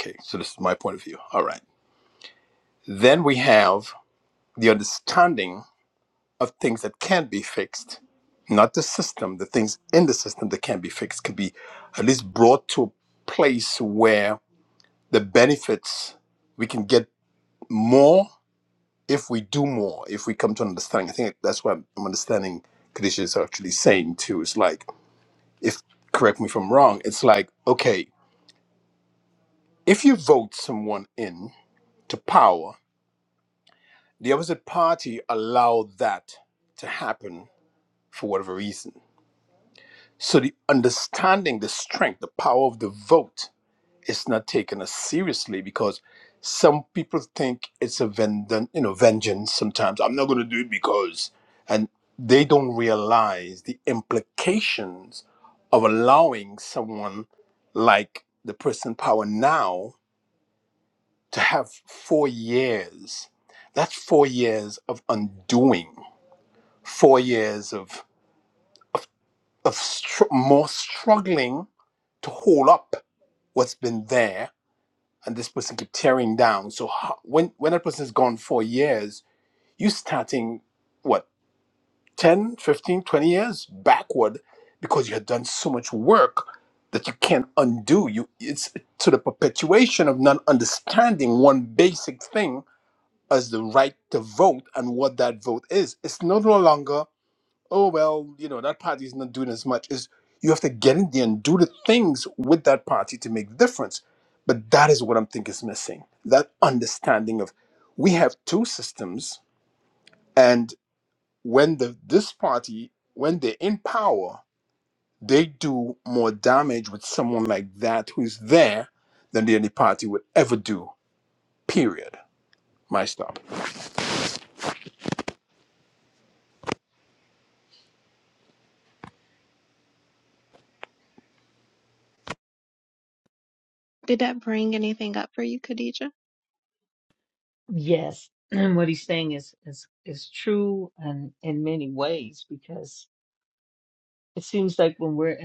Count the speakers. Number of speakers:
three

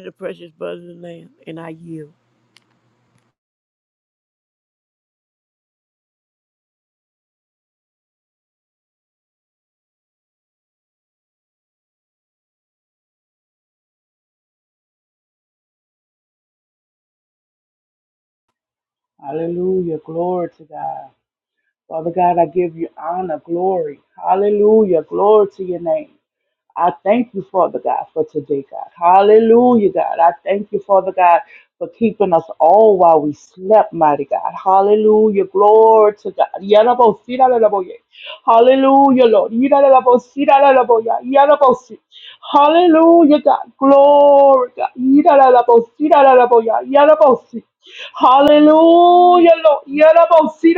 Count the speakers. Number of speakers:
two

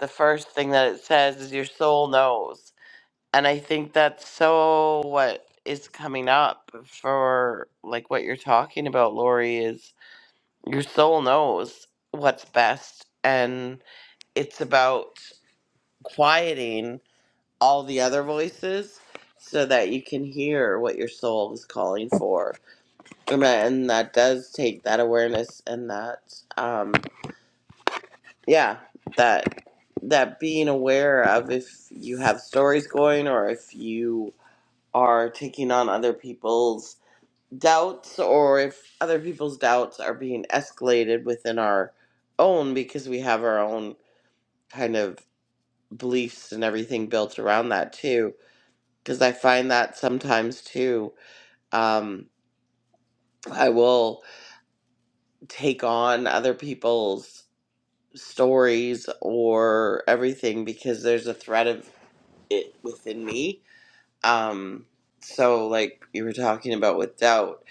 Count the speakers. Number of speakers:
one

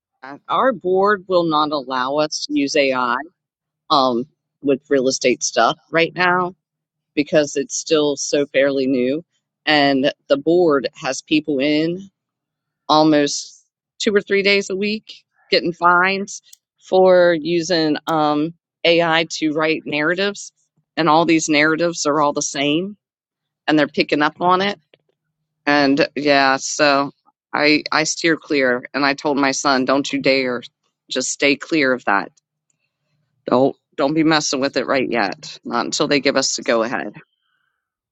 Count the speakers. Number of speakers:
one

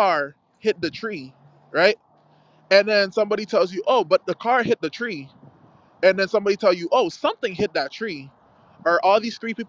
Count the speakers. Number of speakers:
one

